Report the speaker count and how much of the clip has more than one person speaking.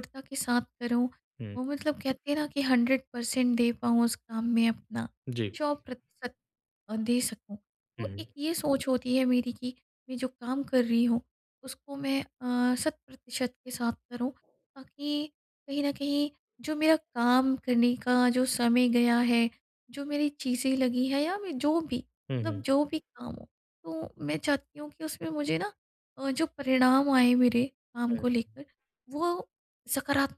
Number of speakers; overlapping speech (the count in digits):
2, about 2%